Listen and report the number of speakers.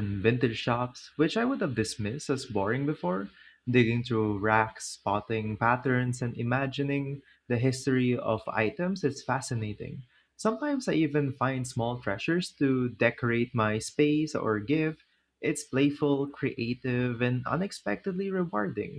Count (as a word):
one